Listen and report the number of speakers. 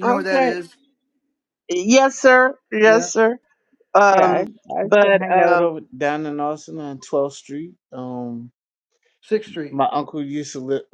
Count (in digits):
3